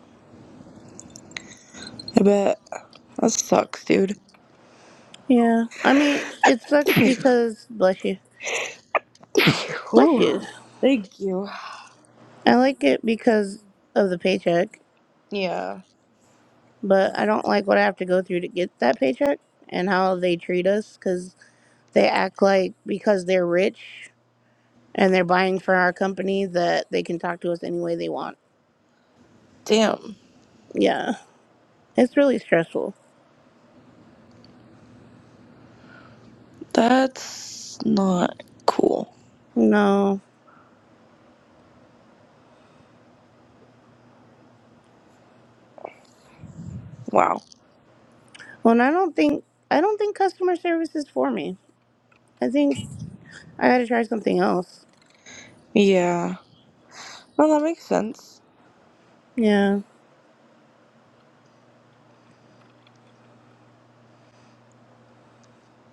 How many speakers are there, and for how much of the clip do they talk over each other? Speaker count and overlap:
2, under 1%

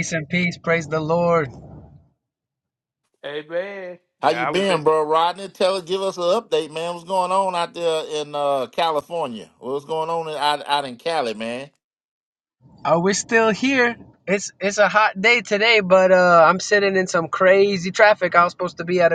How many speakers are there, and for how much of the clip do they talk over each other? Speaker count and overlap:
3, about 3%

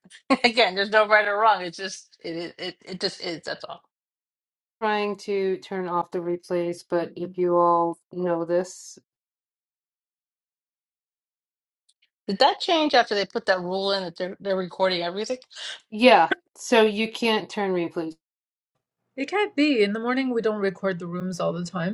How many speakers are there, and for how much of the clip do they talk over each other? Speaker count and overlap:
3, no overlap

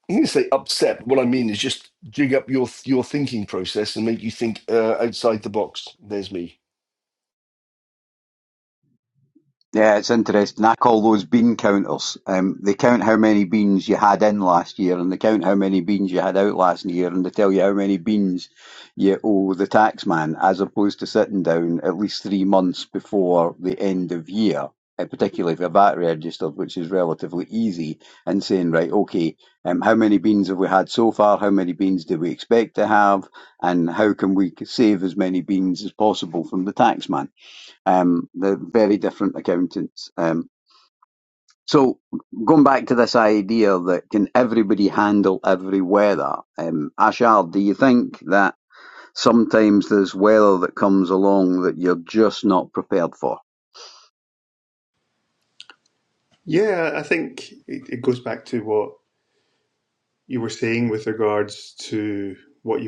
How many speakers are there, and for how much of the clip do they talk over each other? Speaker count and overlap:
3, no overlap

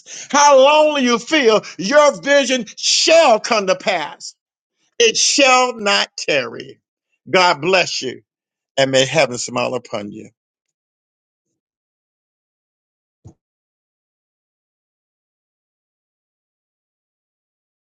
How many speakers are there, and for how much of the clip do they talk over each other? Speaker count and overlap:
1, no overlap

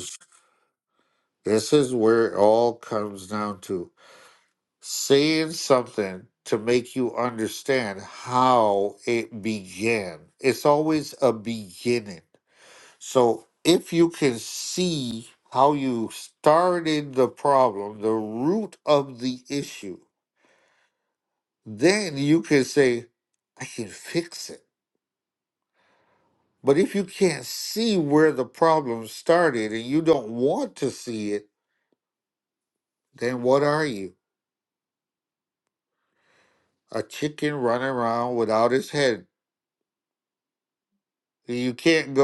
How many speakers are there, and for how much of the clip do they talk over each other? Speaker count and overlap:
1, no overlap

